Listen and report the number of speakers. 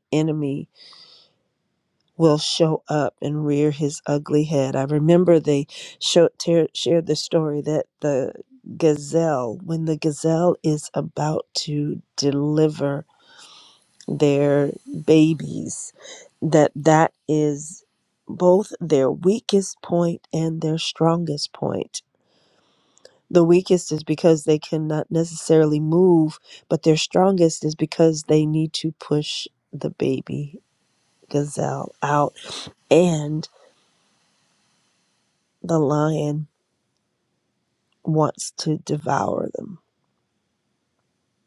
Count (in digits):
1